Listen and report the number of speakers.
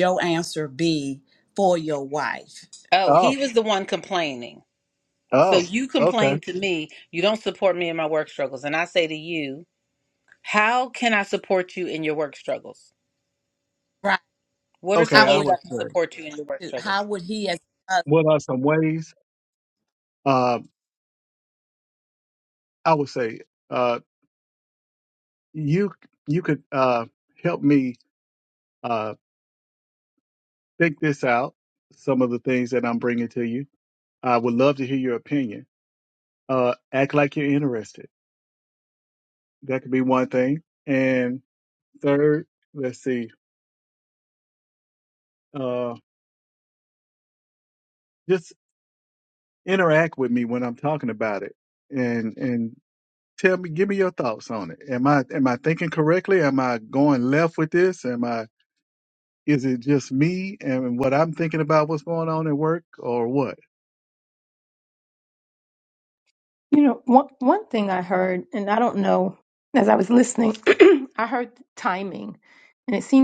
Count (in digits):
4